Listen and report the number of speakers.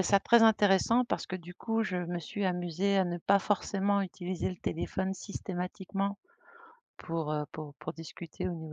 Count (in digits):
1